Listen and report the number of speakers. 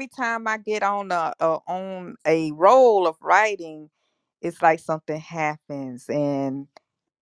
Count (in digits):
1